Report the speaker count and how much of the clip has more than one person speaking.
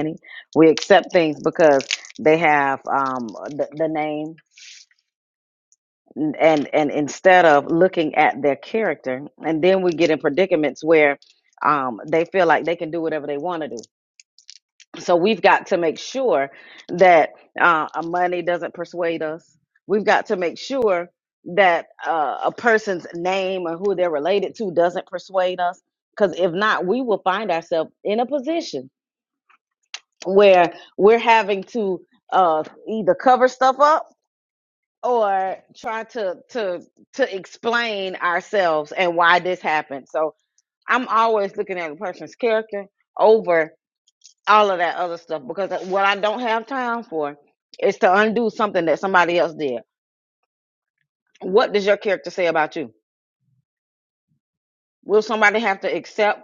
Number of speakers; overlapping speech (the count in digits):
1, no overlap